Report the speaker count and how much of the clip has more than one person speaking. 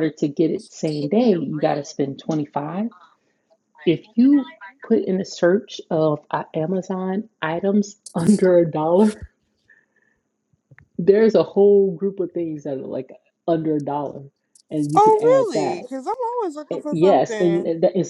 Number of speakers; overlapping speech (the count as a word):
two, about 11%